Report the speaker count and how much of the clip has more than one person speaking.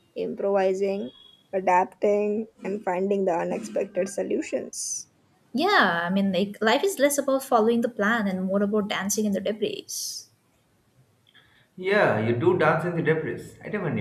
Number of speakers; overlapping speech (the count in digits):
3, no overlap